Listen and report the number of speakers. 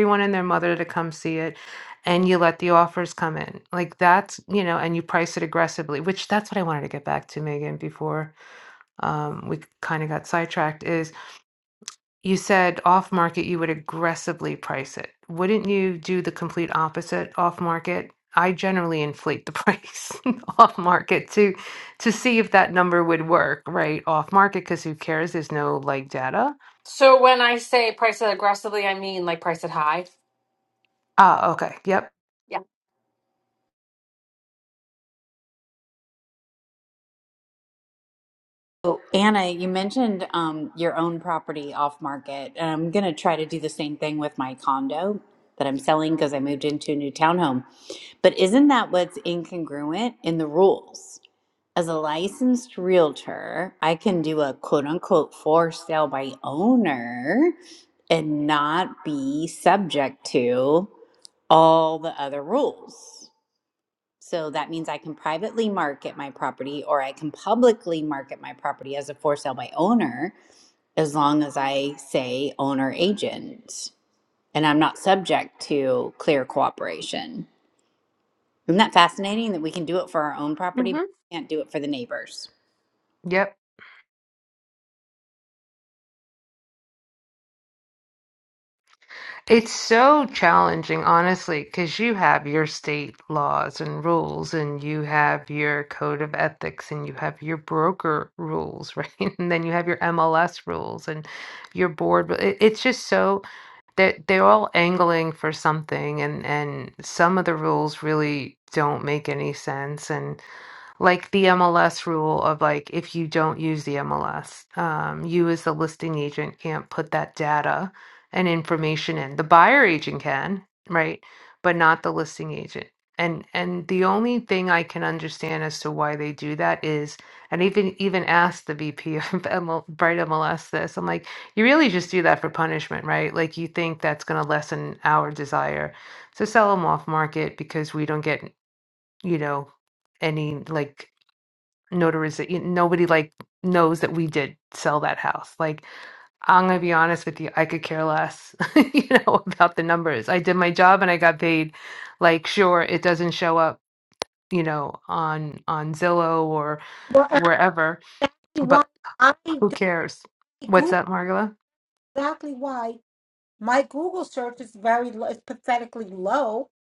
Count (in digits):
4